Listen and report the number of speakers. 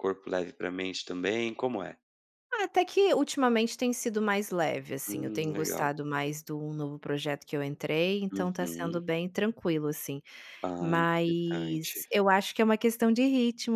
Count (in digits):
2